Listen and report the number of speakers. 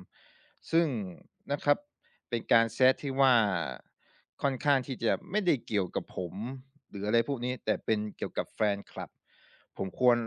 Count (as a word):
one